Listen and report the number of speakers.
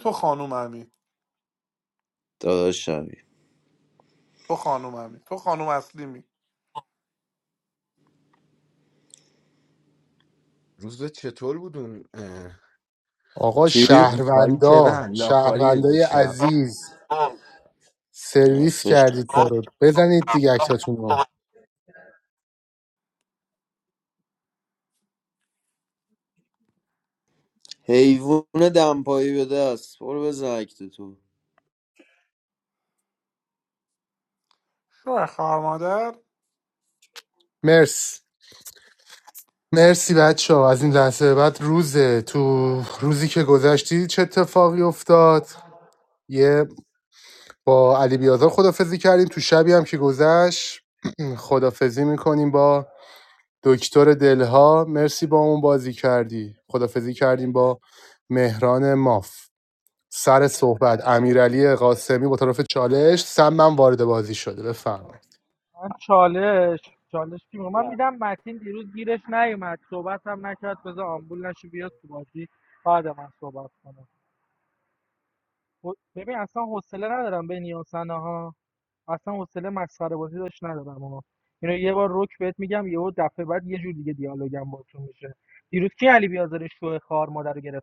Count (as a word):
five